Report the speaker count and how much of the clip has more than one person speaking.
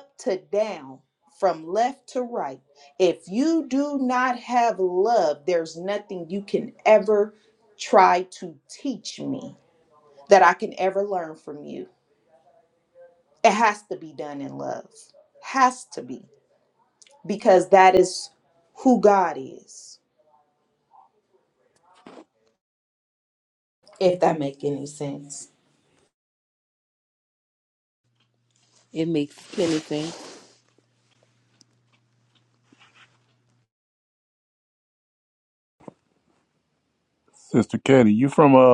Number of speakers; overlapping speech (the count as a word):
three, no overlap